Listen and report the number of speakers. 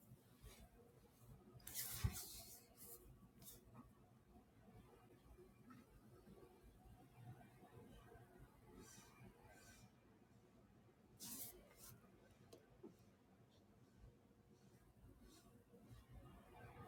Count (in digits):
0